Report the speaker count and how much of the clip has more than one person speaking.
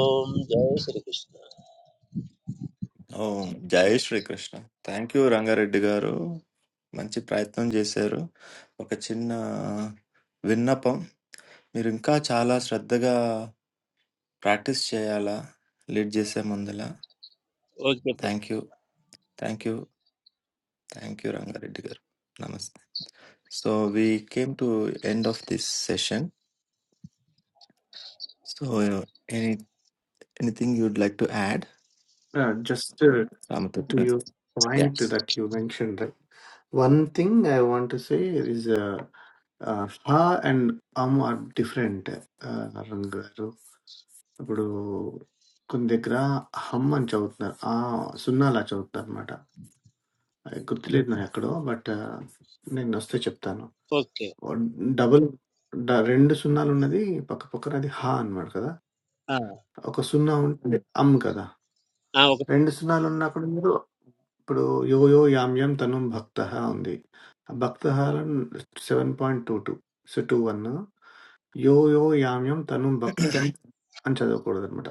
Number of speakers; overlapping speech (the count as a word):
three, about 1%